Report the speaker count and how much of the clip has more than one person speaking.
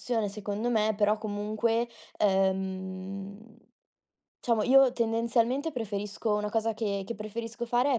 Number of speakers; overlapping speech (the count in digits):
1, no overlap